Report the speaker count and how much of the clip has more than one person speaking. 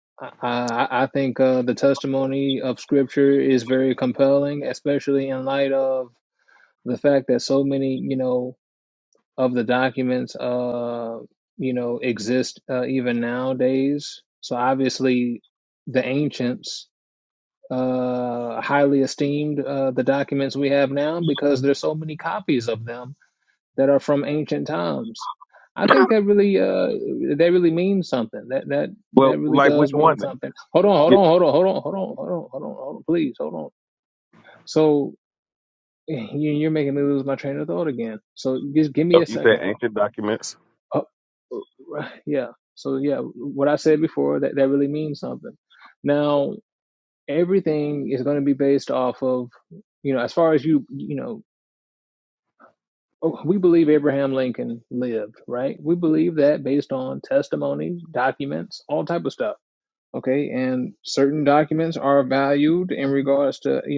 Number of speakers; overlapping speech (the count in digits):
2, about 3%